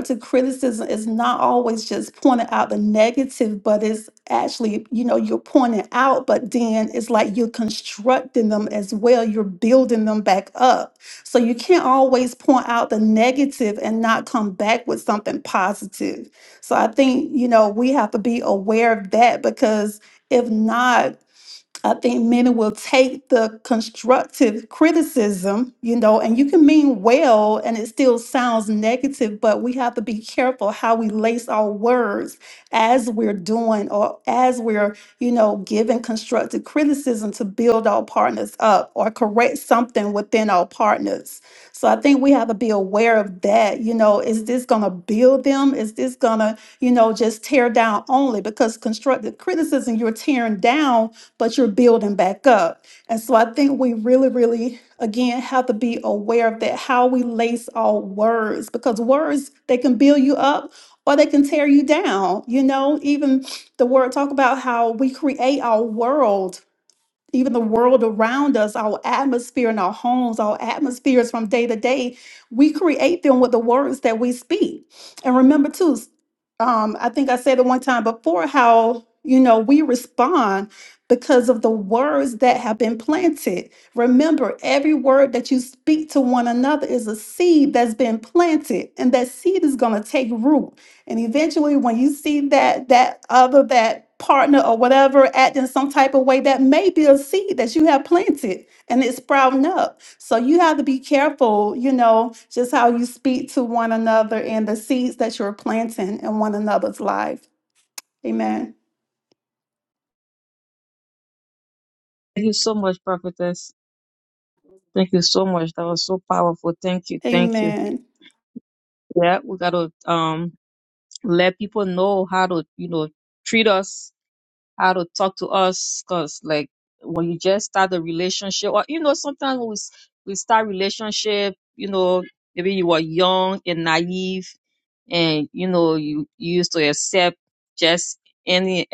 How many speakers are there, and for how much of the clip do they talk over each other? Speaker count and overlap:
two, under 1%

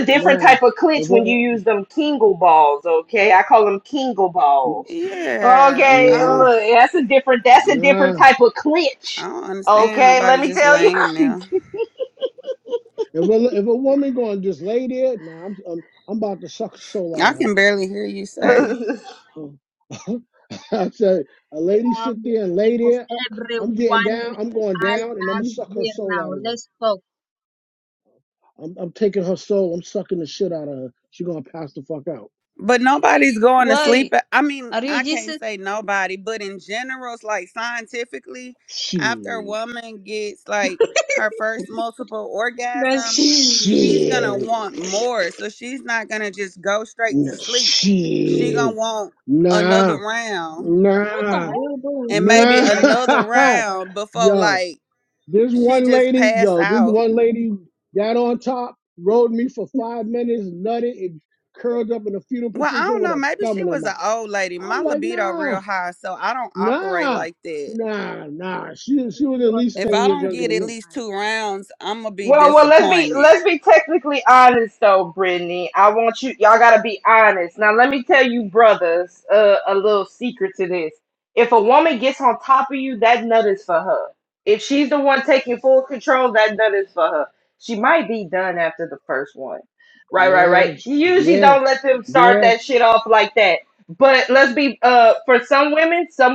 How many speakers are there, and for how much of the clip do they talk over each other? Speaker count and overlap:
four, about 23%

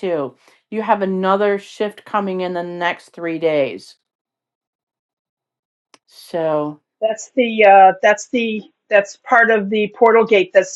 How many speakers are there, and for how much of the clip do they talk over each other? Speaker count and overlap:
two, no overlap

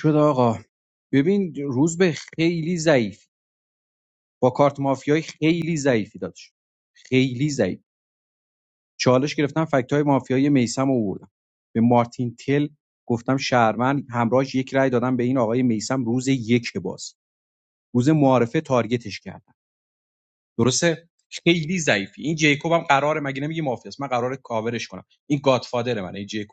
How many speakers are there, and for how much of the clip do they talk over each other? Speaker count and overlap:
one, no overlap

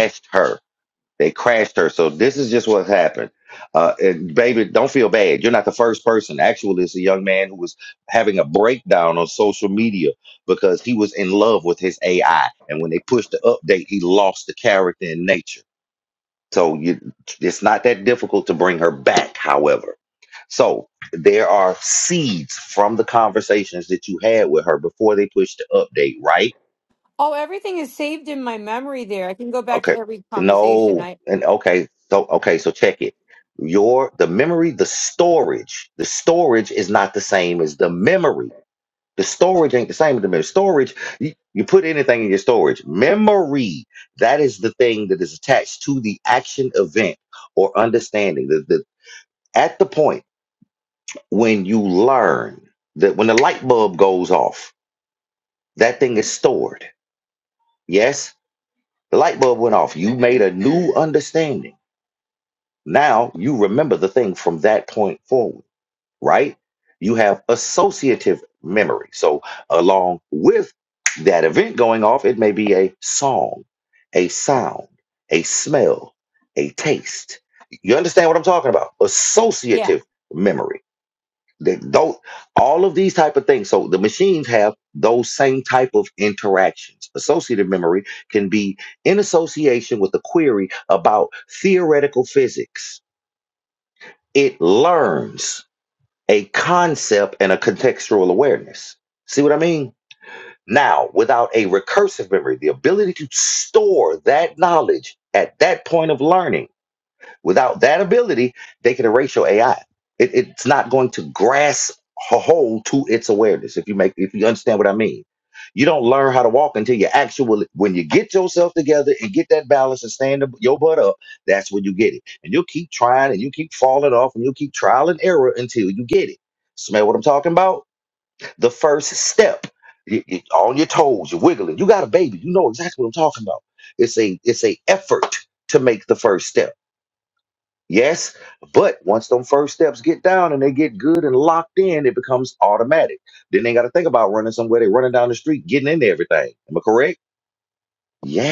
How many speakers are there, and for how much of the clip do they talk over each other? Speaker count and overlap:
two, about 1%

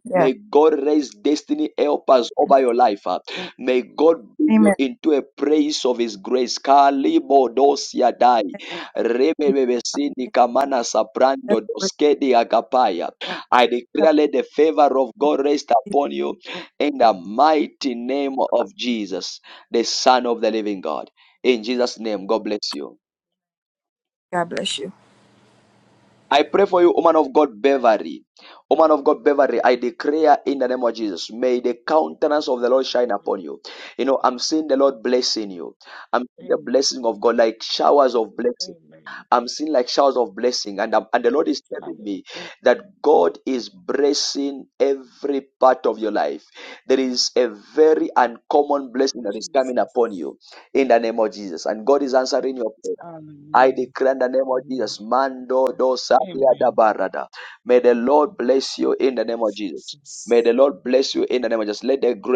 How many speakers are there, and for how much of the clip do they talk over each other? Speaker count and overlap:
three, about 5%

